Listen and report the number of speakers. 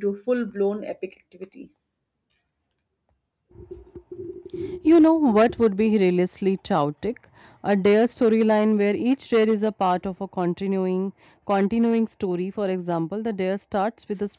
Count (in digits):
2